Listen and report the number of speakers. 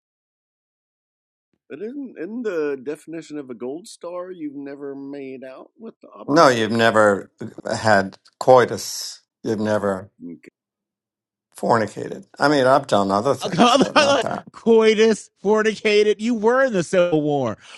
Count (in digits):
3